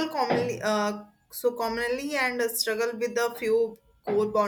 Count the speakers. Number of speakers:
1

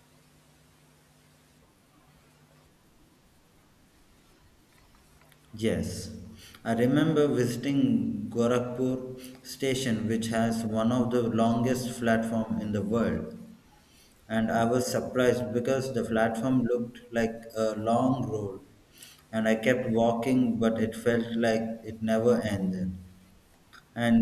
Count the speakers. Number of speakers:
1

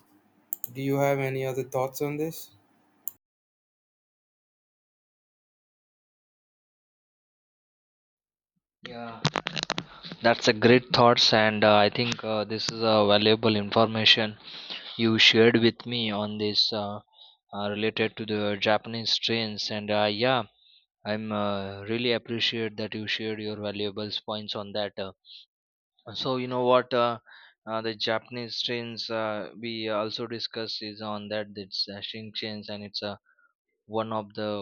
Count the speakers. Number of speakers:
2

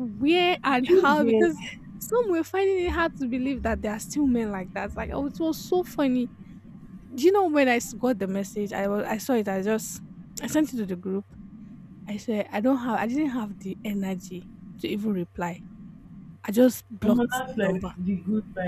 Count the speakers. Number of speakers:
2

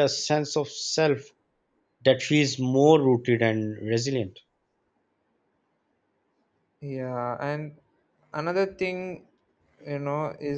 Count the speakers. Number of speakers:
2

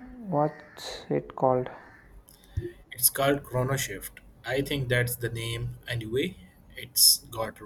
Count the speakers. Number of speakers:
2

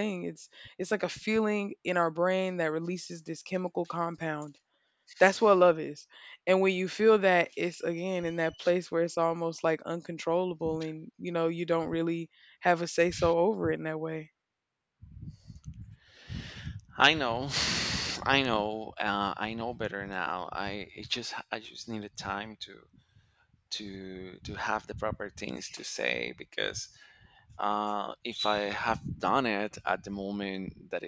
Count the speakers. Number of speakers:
2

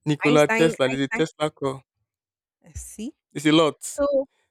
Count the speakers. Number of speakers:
2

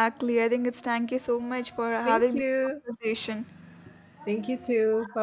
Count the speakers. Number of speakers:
2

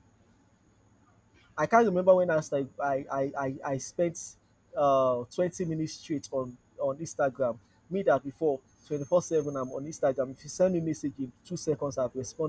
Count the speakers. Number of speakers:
1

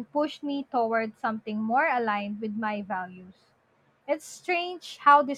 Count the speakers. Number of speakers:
1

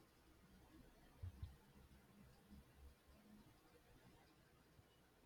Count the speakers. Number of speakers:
0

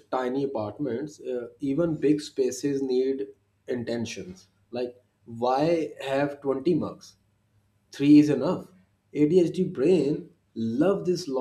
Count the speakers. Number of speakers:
1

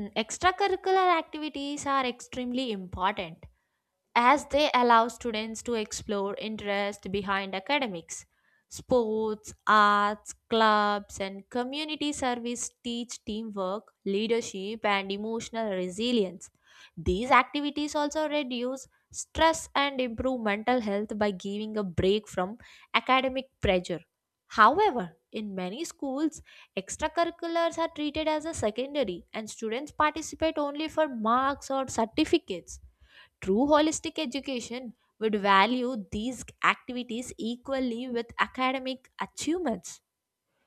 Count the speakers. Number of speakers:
1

